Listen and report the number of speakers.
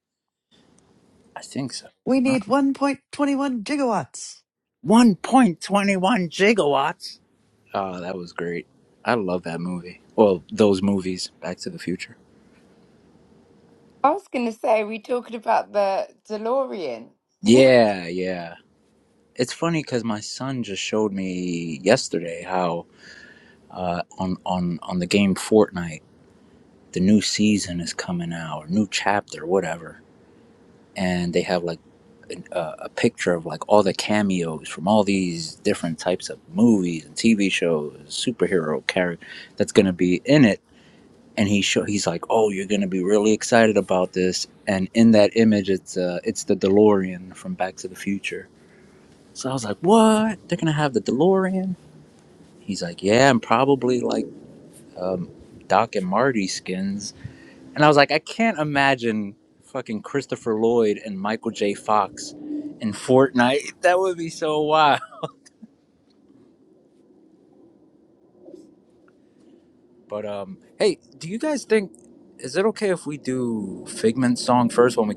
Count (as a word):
three